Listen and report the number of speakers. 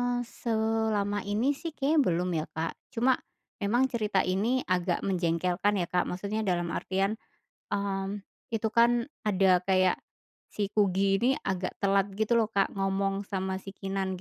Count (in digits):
1